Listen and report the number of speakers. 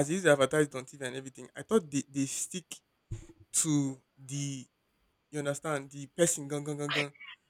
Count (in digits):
1